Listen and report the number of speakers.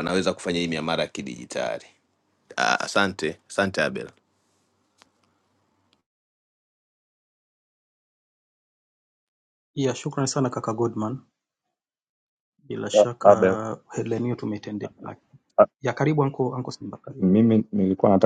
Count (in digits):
3